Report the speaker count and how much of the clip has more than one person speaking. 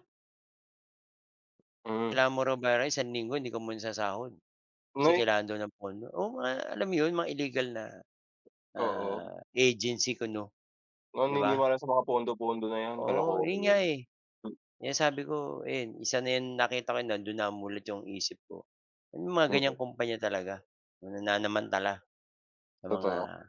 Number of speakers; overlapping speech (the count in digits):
2, about 10%